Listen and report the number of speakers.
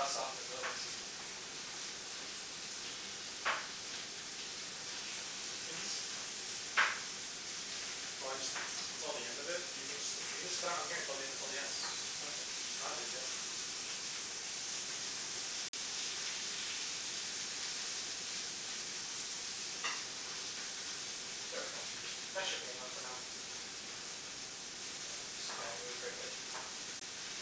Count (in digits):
2